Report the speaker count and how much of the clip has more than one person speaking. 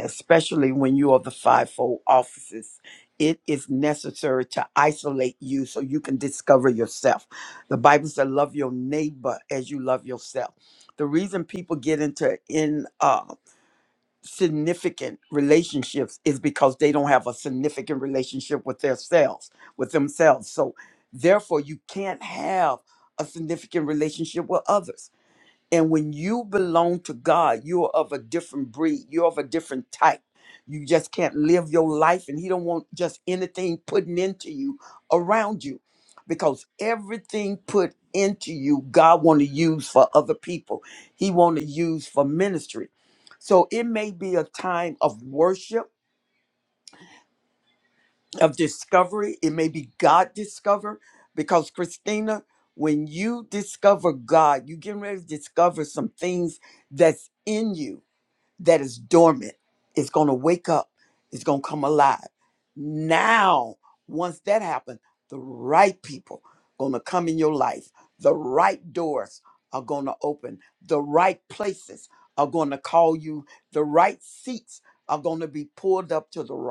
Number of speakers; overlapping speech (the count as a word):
one, no overlap